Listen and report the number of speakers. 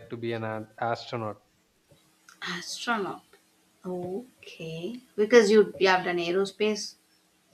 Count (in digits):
2